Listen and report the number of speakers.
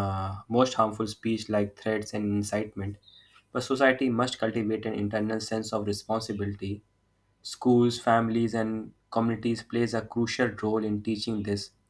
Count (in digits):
1